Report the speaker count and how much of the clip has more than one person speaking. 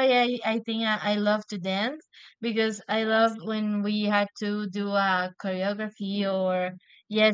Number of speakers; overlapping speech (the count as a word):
one, no overlap